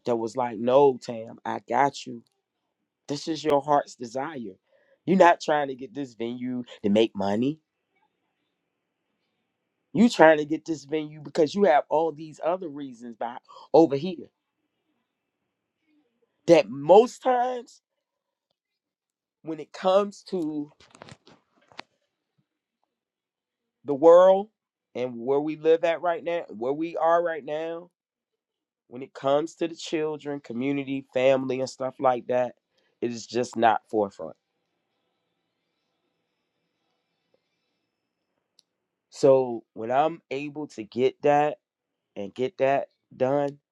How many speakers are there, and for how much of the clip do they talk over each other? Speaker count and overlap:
1, no overlap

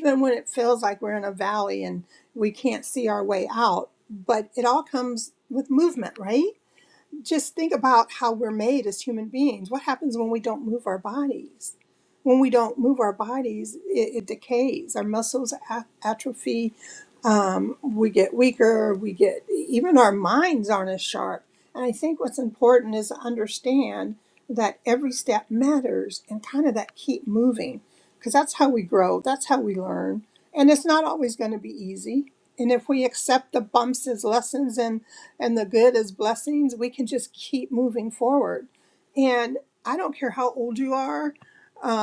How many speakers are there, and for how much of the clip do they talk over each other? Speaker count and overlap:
1, no overlap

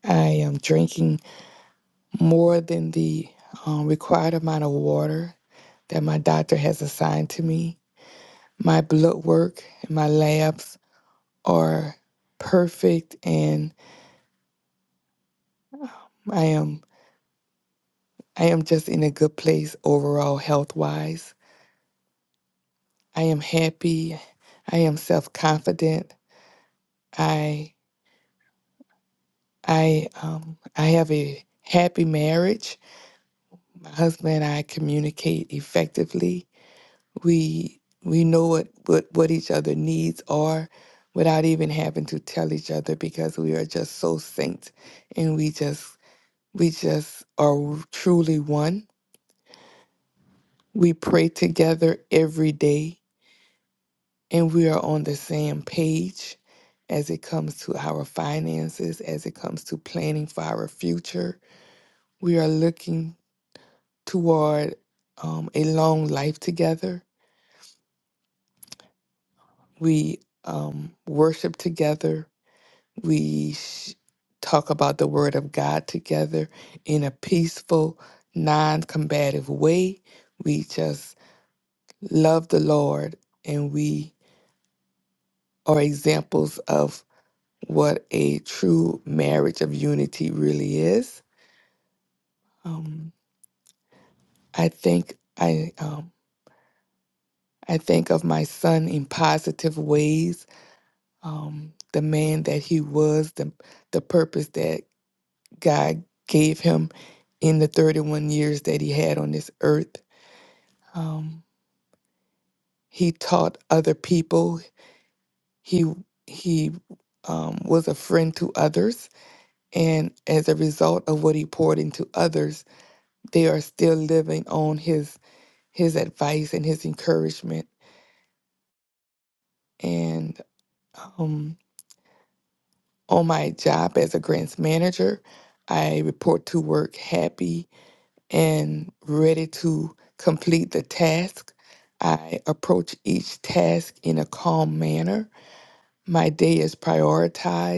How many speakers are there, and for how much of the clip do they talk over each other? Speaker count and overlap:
1, no overlap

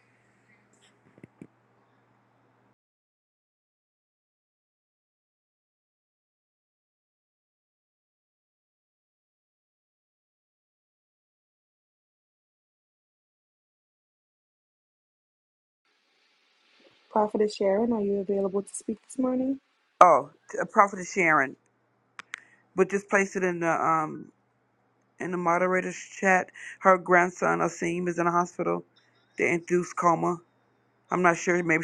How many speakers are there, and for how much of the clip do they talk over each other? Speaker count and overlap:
2, no overlap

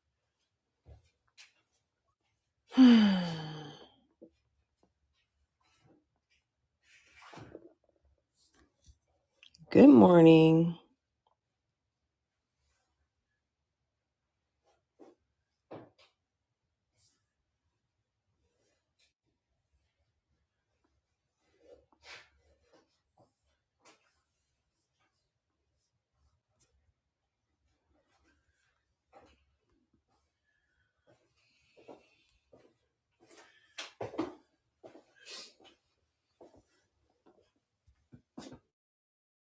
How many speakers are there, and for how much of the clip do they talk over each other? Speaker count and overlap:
1, no overlap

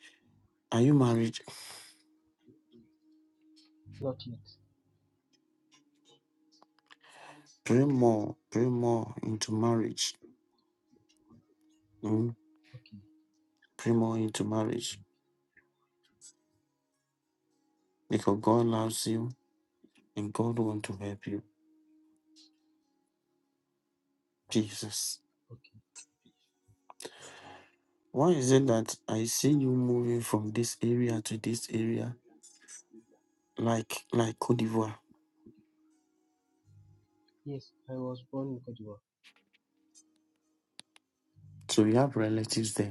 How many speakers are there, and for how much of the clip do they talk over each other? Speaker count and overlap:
2, no overlap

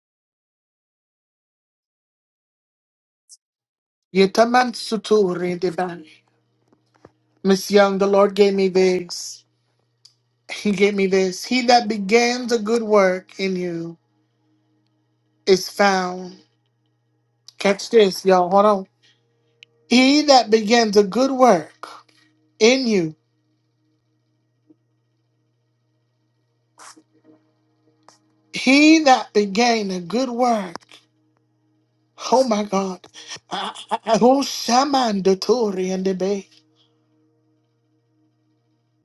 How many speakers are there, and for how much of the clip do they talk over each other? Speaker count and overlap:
1, no overlap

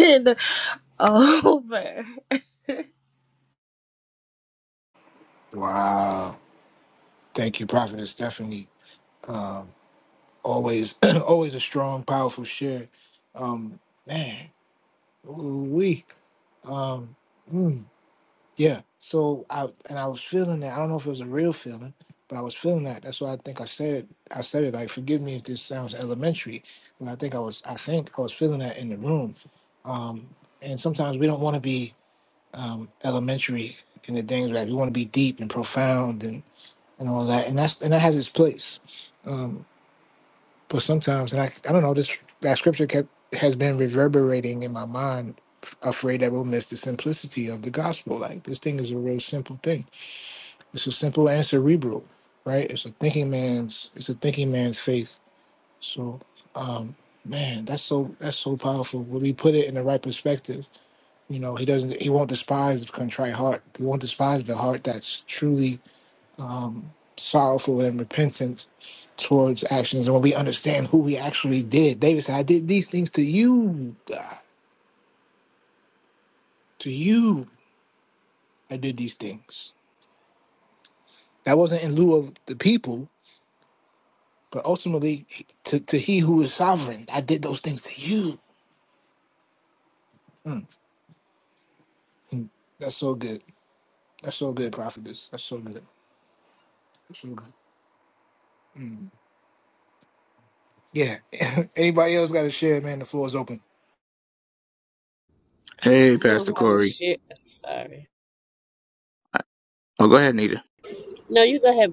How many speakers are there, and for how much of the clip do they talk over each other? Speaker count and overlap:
4, about 1%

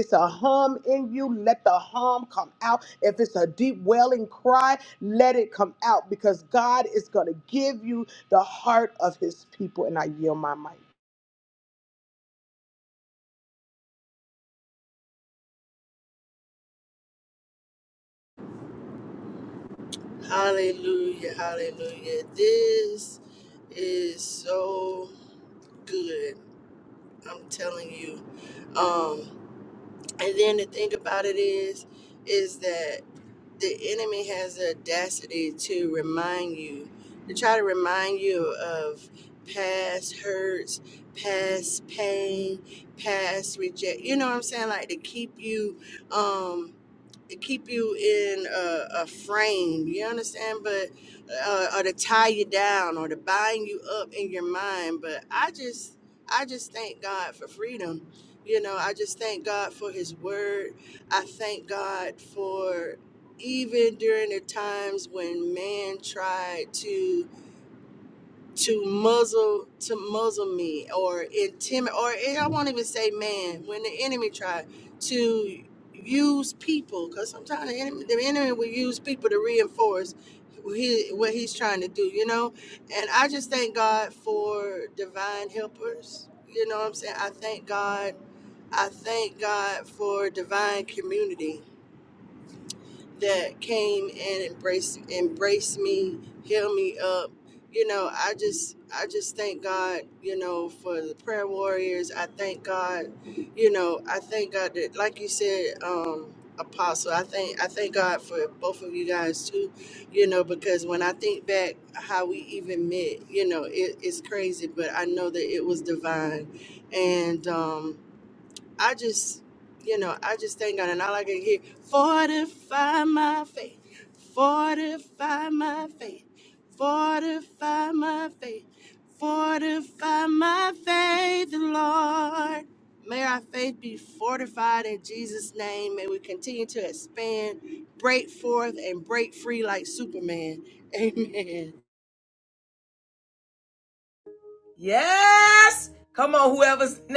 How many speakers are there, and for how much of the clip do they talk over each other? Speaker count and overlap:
3, no overlap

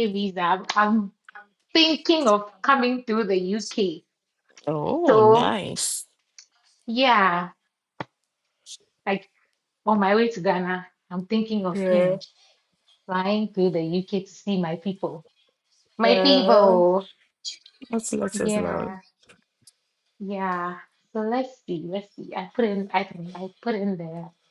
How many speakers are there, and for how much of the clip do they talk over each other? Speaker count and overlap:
2, about 9%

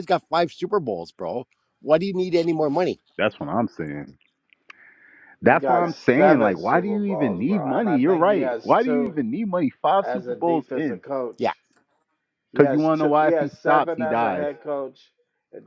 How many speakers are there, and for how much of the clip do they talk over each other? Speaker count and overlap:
3, about 43%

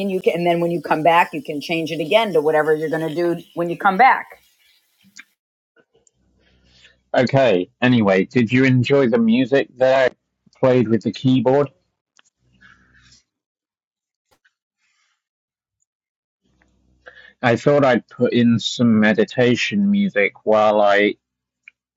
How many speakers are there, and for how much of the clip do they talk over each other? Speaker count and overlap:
2, no overlap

